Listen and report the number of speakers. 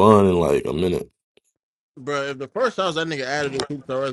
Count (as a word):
two